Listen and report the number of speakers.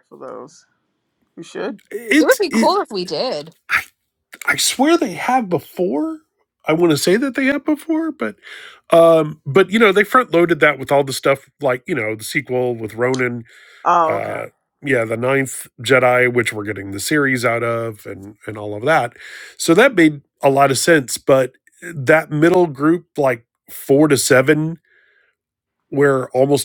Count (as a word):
three